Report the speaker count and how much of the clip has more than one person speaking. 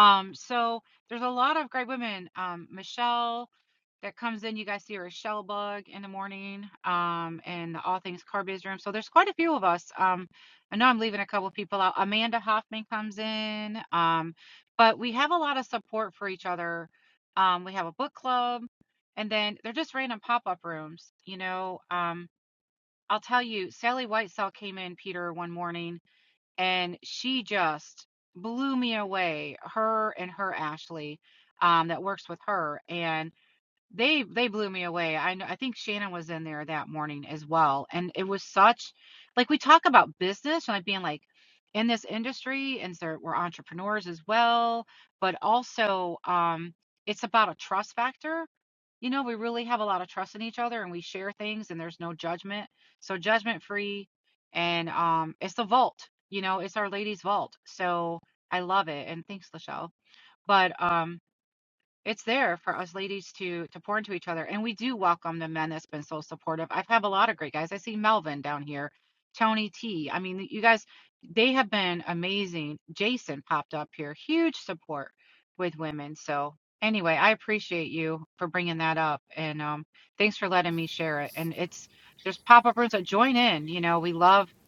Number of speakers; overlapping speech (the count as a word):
one, no overlap